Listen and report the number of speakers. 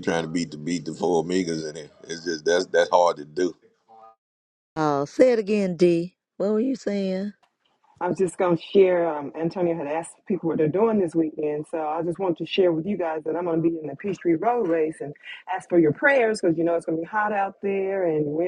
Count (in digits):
3